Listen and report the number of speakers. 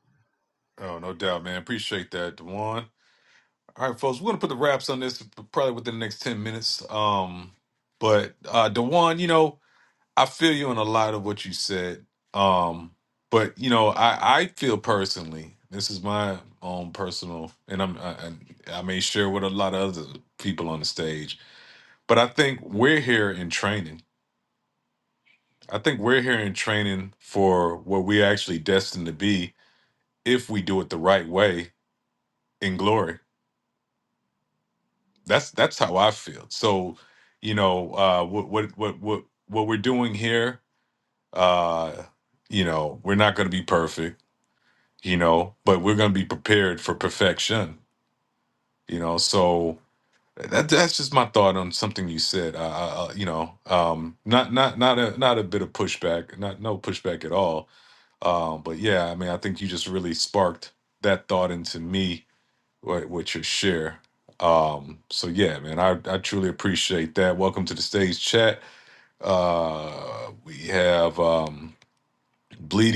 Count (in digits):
1